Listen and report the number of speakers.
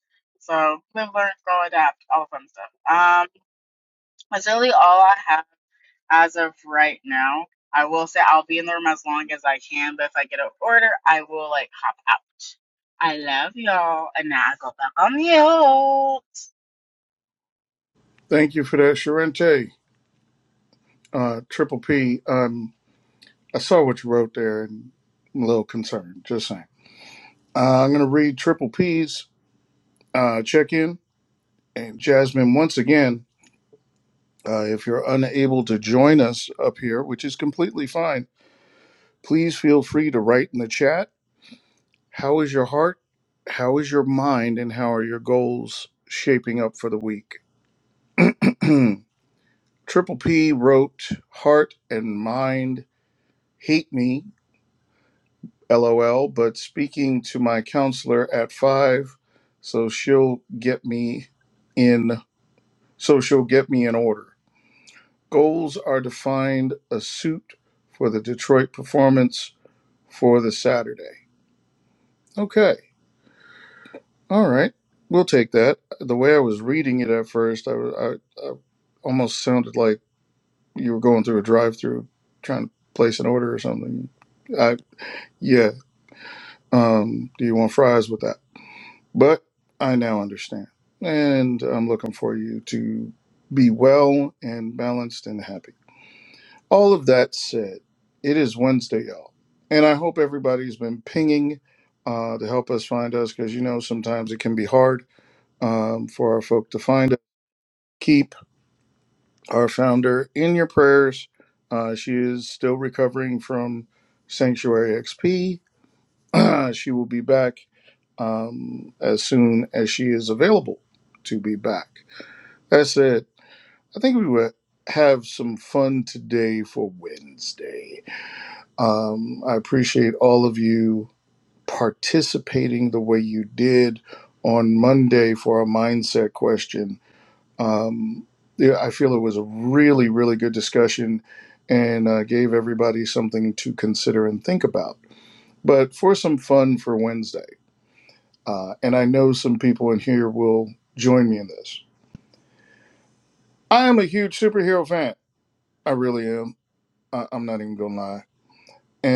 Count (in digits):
2